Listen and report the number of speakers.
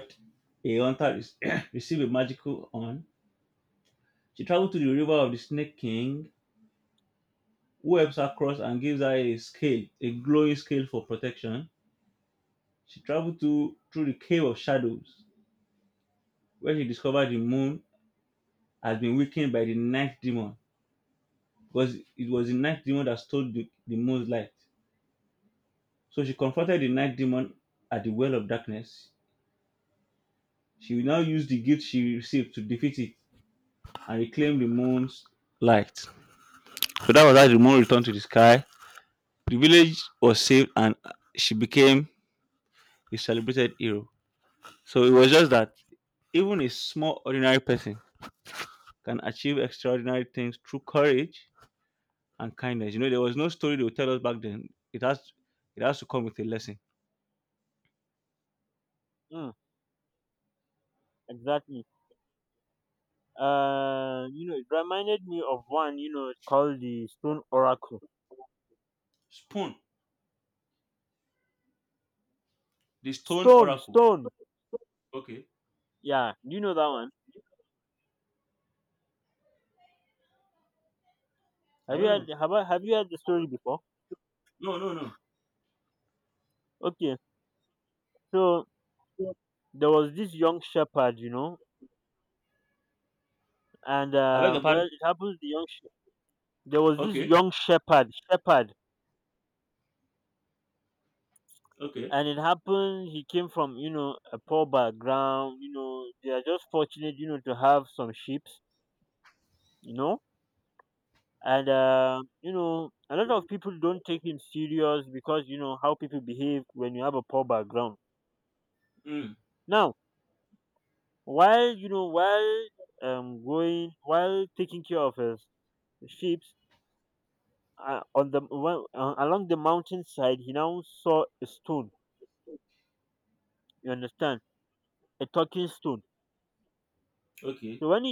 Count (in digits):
2